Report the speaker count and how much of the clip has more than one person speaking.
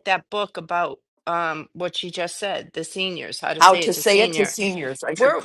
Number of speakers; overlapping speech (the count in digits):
2, about 22%